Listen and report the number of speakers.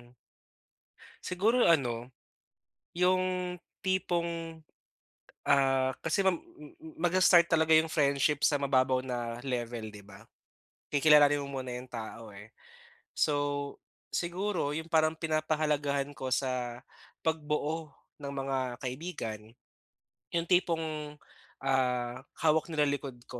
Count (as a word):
one